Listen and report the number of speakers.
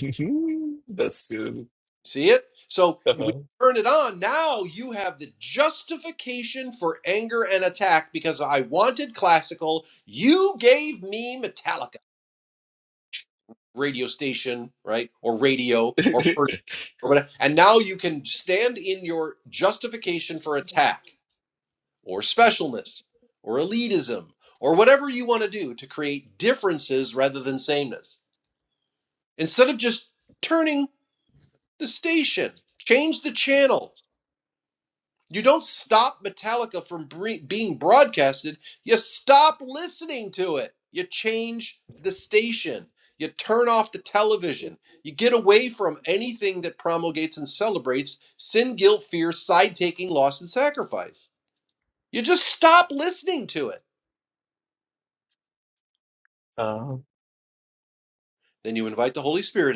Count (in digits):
2